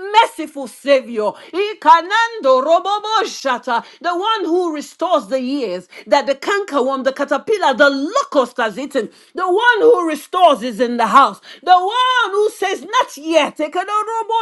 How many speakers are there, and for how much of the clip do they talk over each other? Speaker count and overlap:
one, no overlap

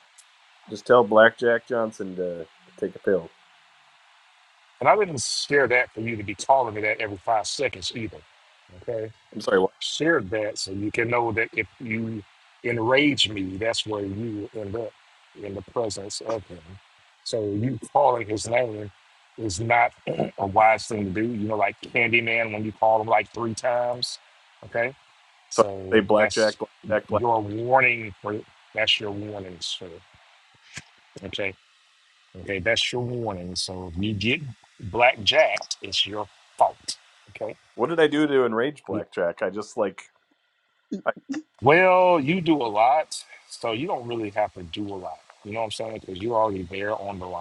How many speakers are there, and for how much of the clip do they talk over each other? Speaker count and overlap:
two, about 2%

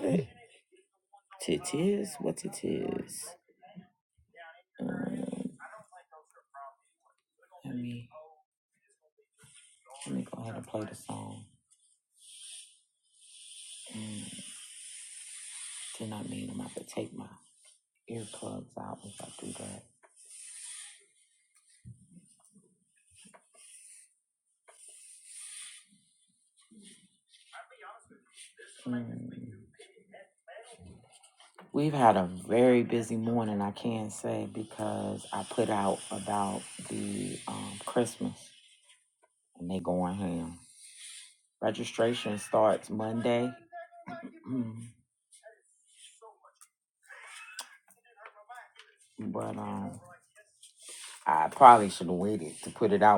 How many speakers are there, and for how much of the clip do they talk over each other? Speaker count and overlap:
one, no overlap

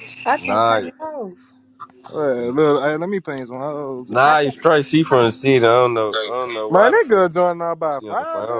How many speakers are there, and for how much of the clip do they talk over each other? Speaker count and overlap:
three, about 22%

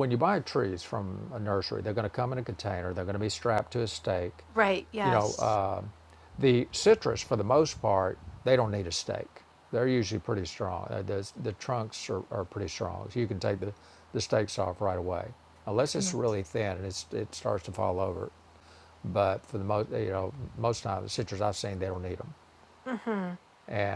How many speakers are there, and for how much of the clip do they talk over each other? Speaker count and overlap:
two, about 1%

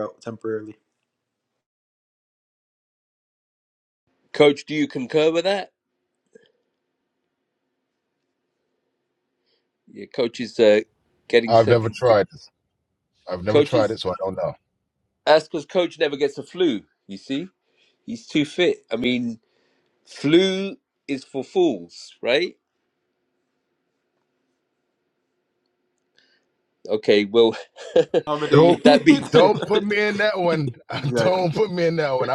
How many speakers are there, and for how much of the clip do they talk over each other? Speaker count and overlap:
three, about 6%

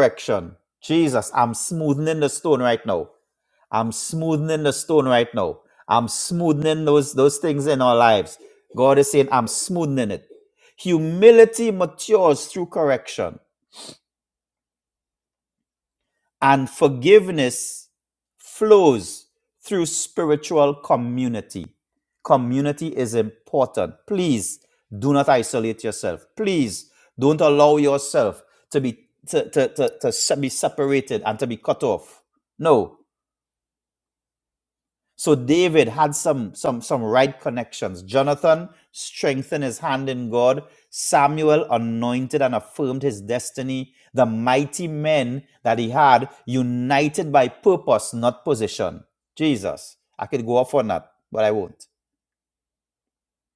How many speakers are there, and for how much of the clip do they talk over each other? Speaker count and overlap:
one, no overlap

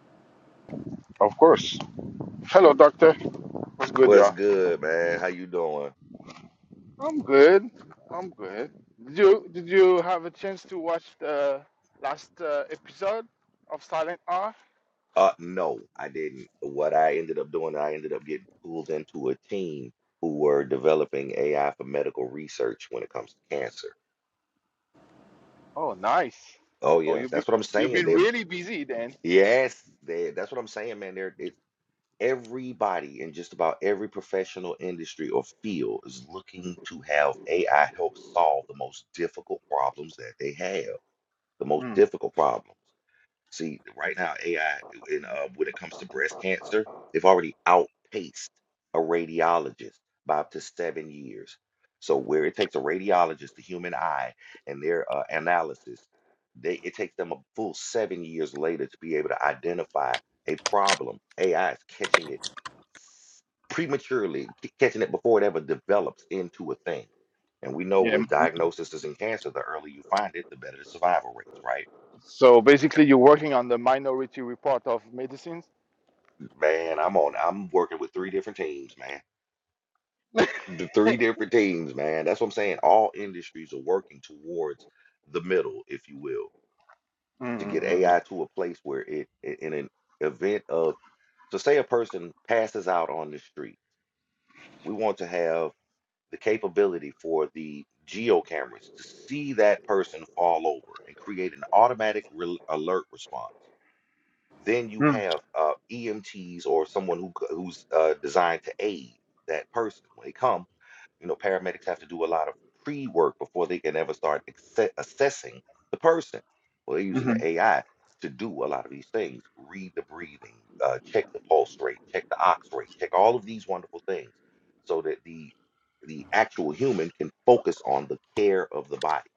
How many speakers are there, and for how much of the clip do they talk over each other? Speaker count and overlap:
two, about 2%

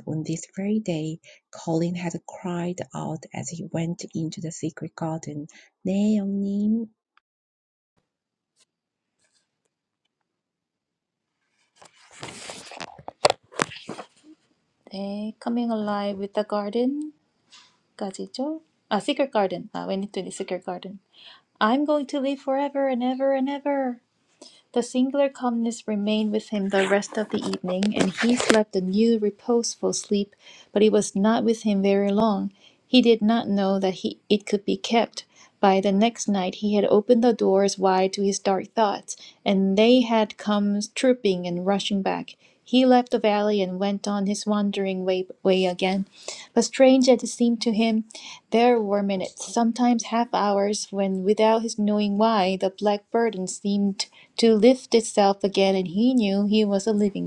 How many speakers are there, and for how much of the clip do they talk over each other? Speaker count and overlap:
two, no overlap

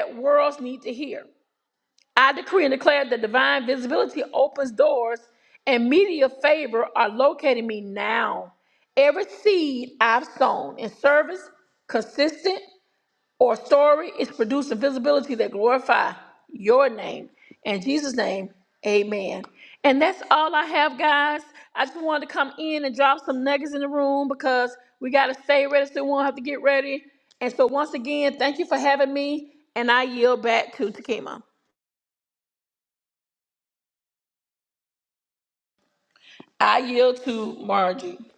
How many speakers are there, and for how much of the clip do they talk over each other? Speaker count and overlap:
one, no overlap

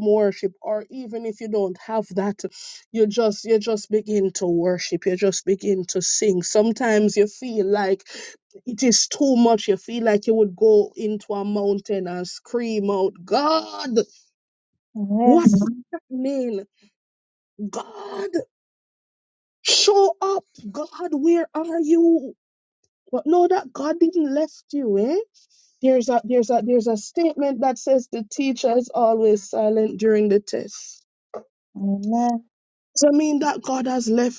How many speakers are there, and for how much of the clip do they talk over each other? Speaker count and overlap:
two, about 1%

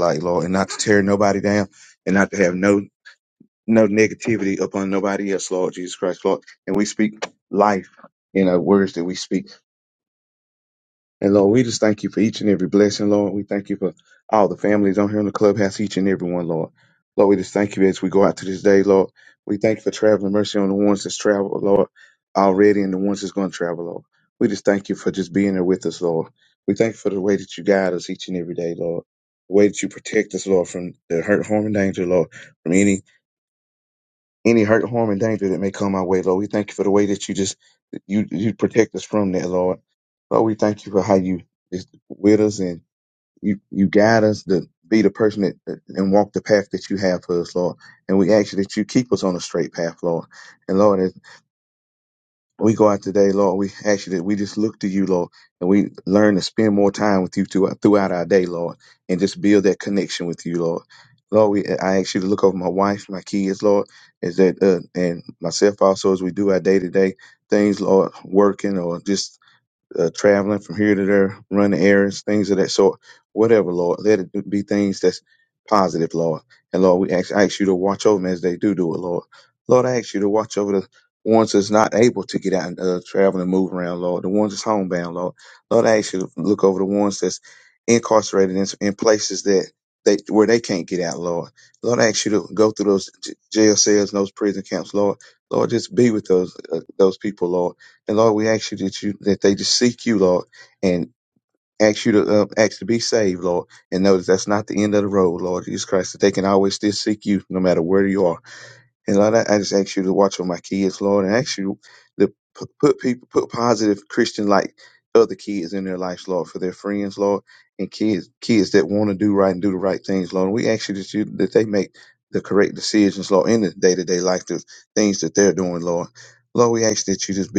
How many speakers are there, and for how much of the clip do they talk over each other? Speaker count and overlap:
one, no overlap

